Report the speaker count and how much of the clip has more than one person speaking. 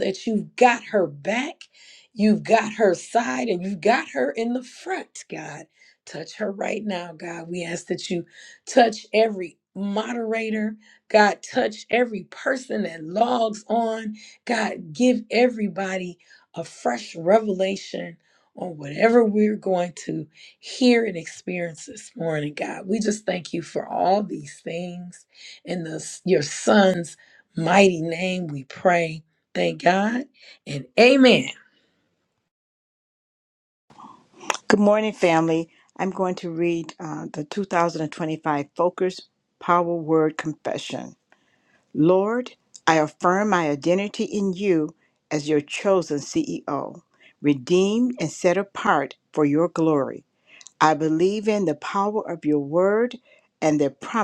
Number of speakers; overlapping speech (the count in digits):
2, no overlap